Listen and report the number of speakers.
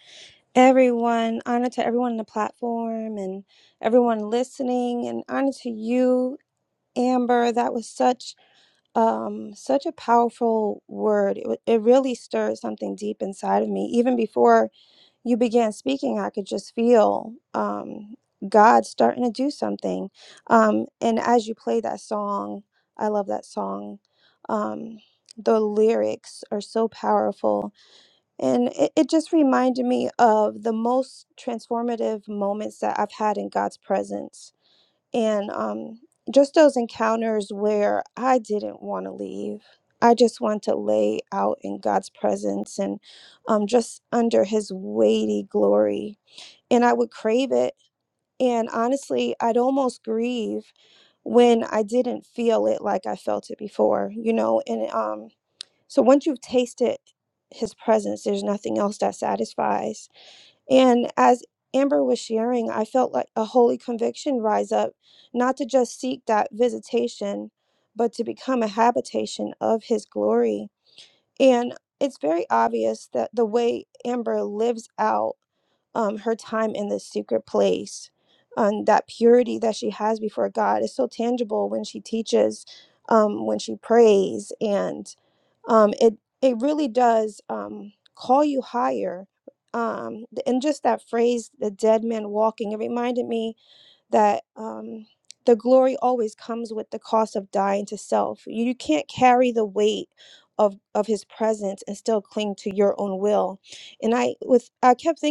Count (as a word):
one